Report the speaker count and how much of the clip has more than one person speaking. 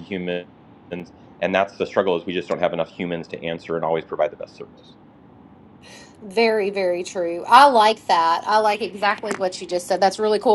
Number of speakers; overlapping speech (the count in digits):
2, no overlap